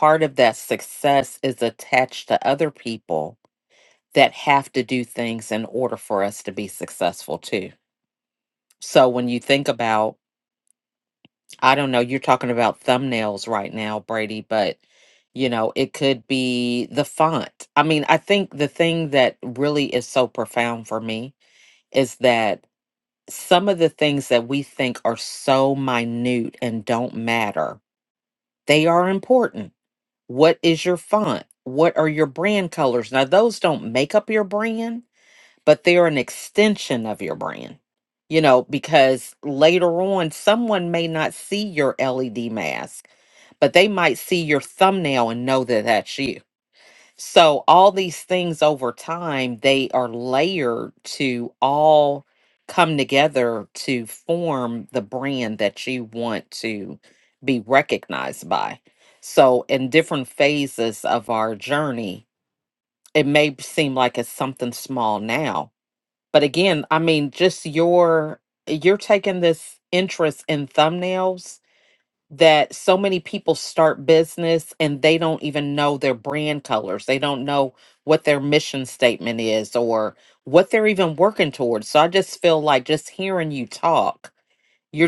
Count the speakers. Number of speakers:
one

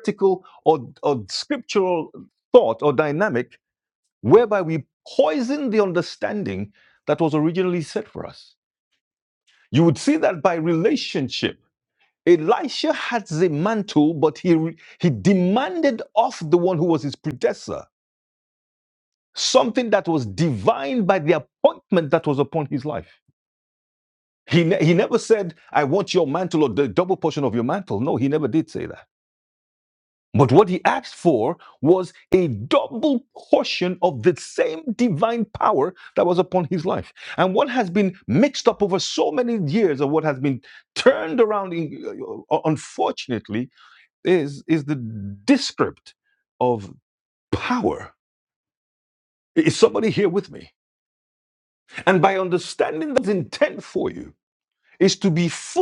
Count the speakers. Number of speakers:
one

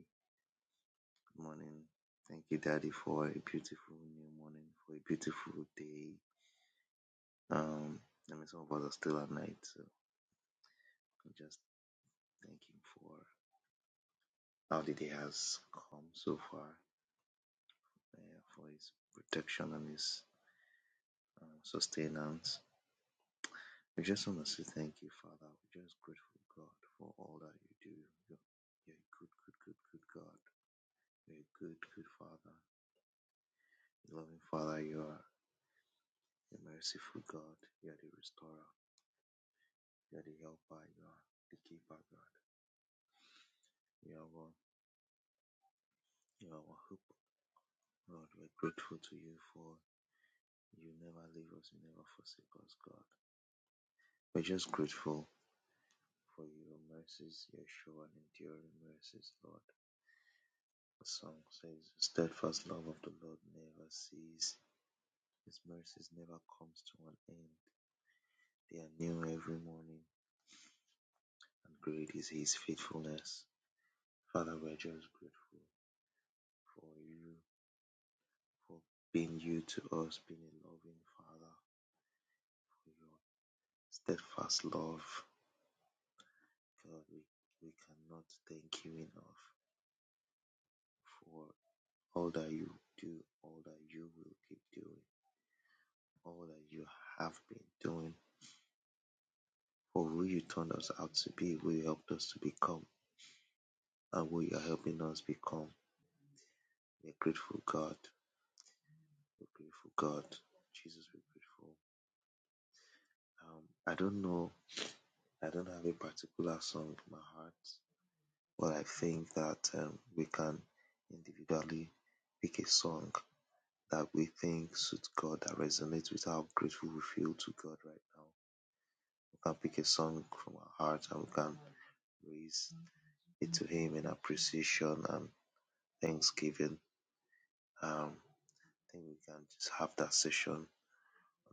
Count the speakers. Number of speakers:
one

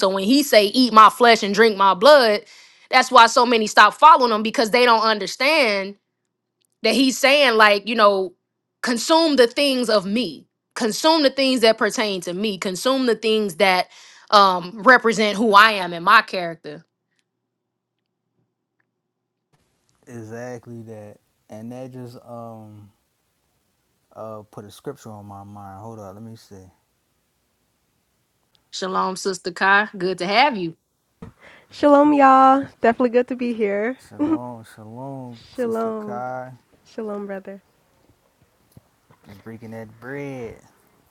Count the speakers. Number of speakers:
three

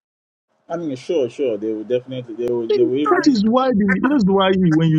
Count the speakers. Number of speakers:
two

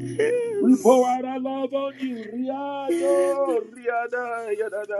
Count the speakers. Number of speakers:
two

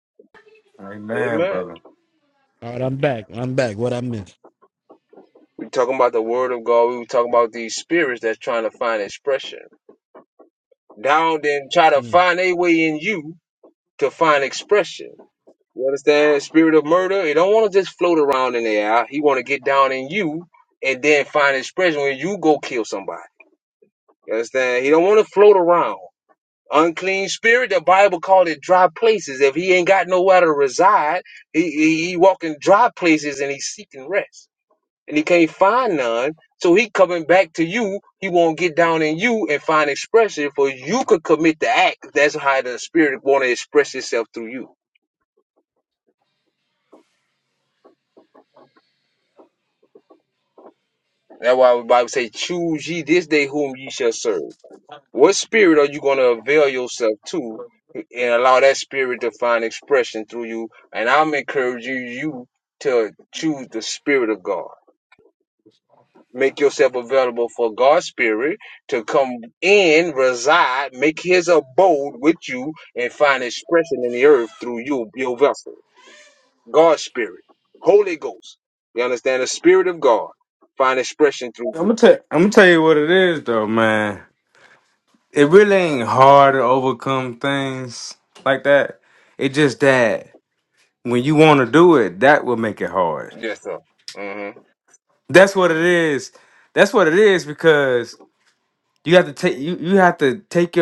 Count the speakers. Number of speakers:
three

